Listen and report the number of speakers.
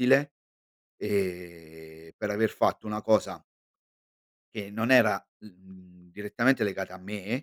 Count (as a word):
one